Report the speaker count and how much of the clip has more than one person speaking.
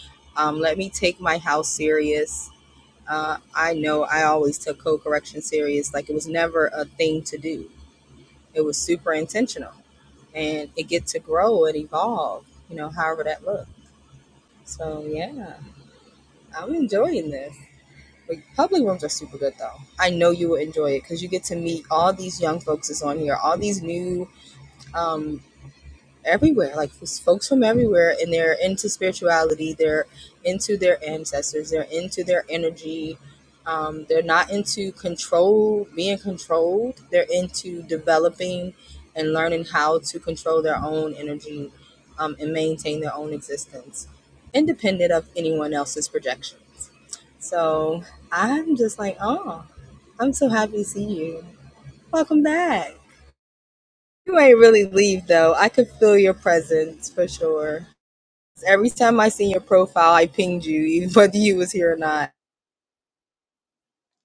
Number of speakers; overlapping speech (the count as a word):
one, no overlap